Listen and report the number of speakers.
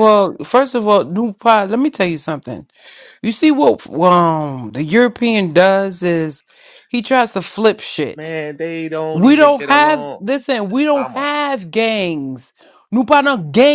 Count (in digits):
2